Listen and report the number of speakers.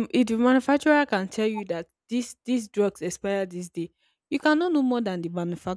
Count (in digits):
1